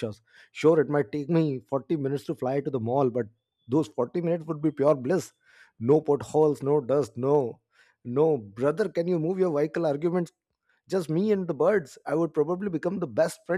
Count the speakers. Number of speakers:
1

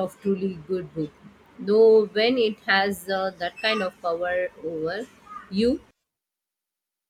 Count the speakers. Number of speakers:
1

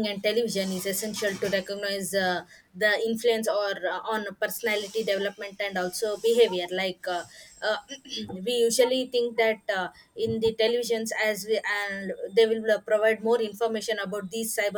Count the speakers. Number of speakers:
1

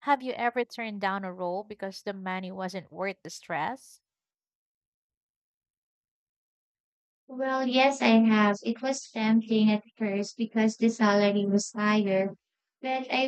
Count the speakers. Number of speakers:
2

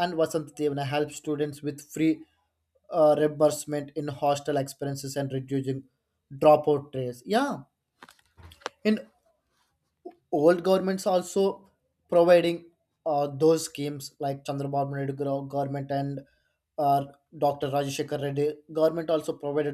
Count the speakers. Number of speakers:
1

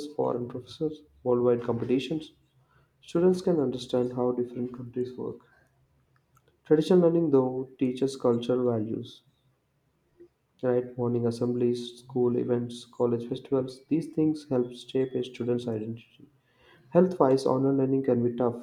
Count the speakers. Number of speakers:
1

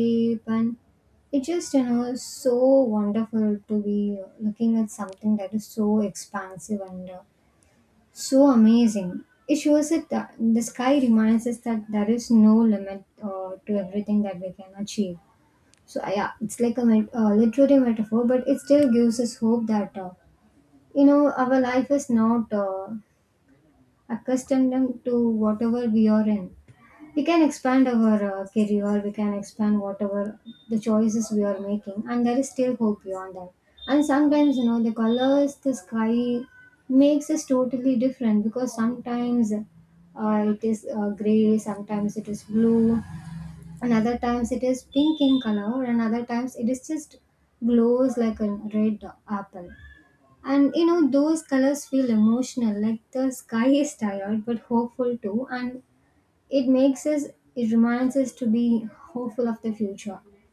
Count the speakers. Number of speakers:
1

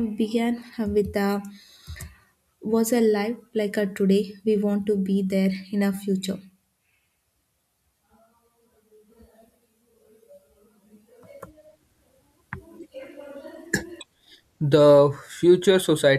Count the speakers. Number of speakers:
2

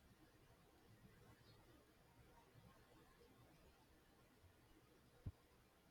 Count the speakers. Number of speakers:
0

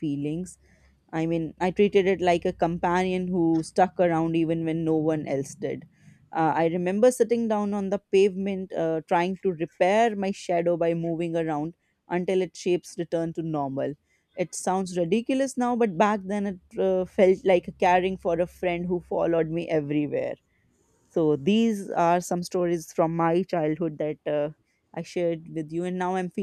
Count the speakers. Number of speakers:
1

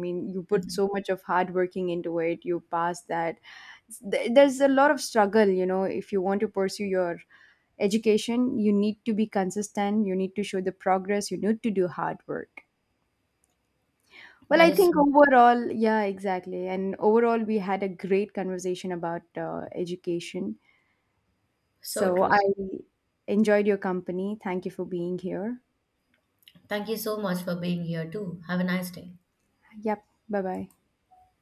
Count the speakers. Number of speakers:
2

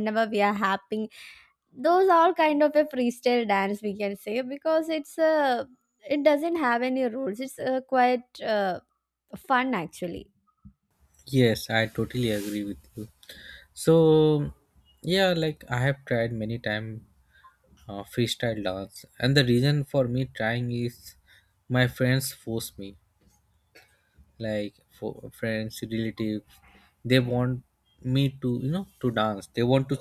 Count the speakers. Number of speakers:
2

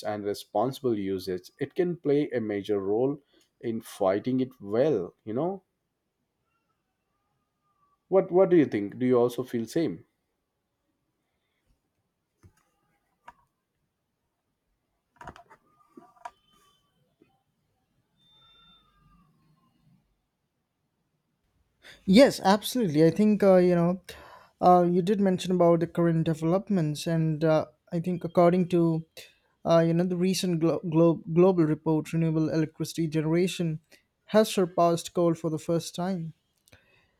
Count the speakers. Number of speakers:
2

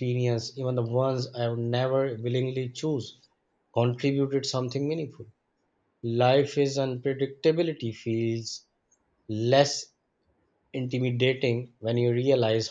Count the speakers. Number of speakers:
1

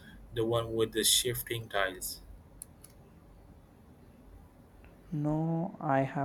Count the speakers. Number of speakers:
2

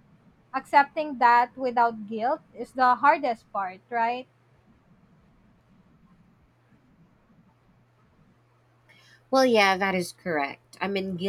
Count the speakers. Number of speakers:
2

